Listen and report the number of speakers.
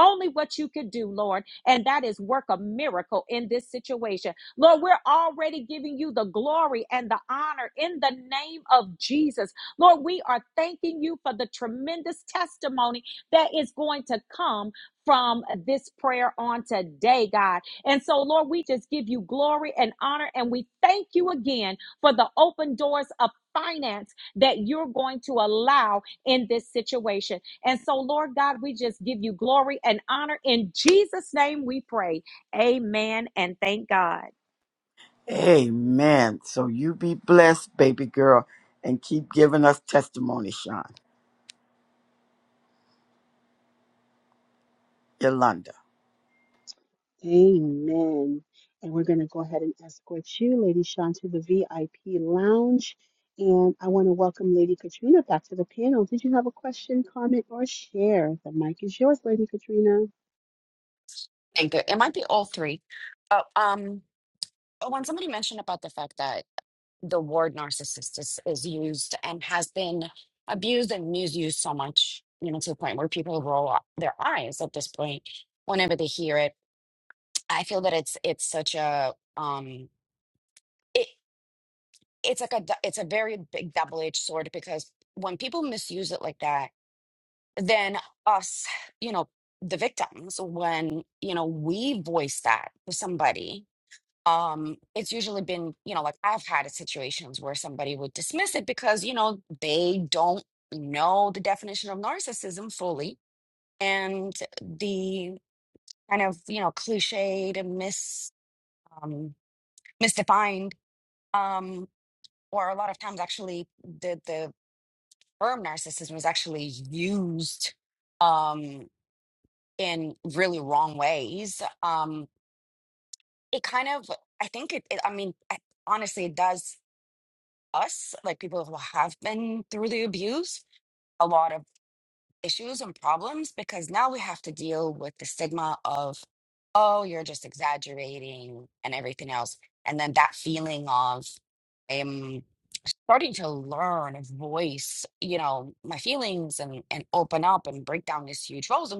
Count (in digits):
4